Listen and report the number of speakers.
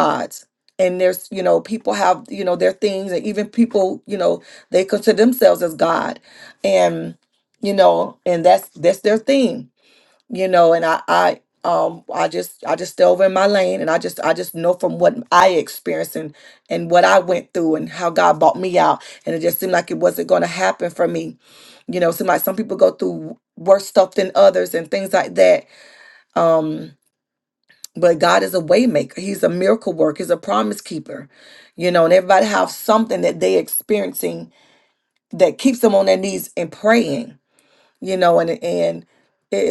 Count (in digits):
1